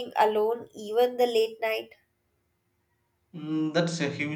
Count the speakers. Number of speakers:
two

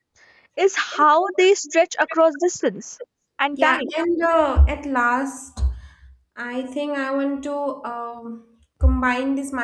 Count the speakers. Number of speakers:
two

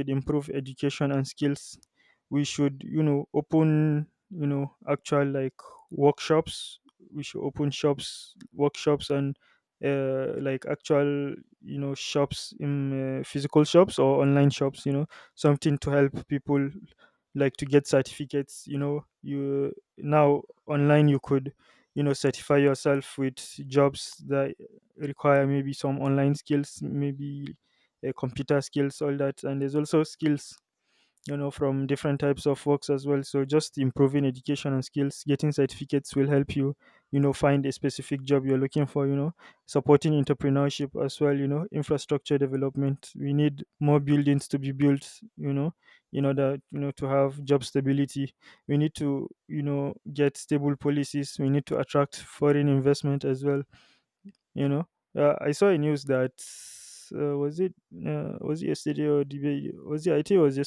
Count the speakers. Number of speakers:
one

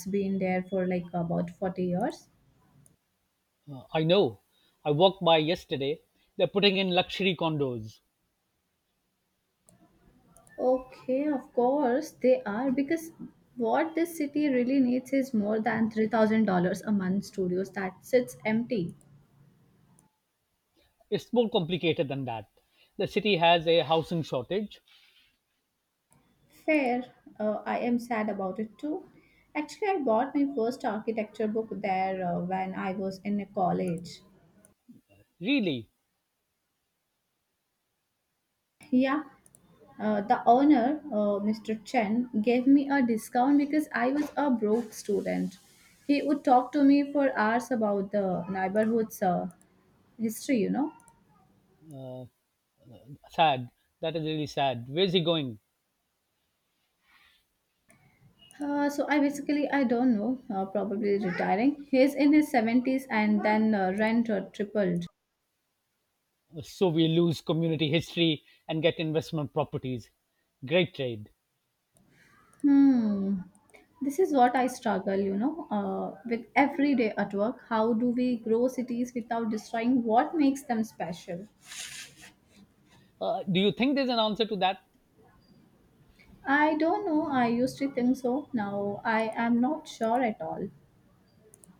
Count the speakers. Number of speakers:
two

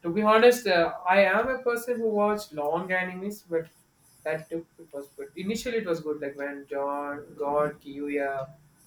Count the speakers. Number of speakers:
one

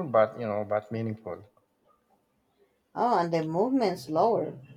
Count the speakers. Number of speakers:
two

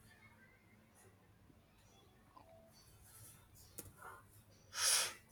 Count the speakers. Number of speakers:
zero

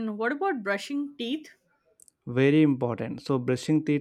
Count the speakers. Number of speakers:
two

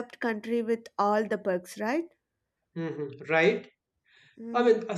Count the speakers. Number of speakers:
two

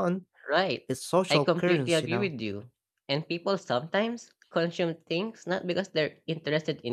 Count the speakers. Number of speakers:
two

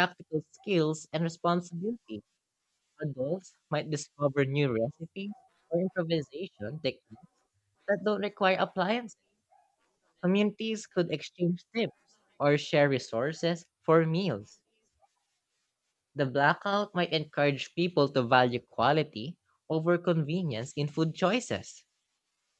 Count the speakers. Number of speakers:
one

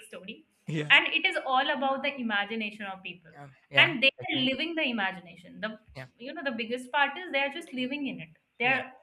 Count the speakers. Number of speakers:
two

